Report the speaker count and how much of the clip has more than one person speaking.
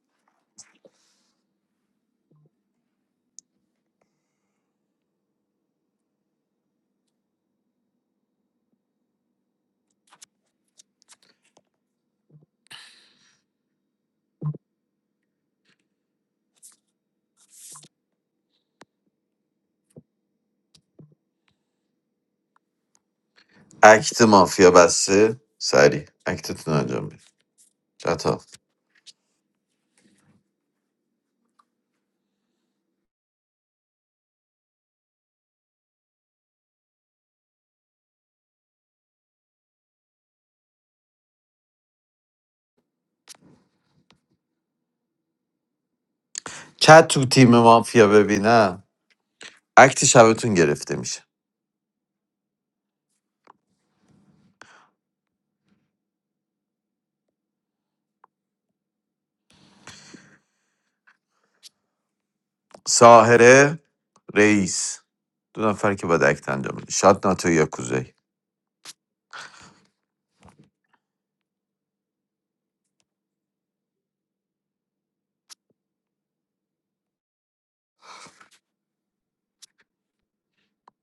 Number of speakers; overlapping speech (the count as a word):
one, no overlap